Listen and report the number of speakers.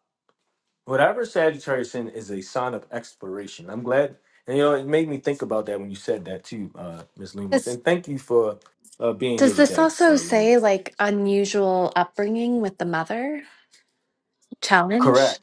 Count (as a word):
two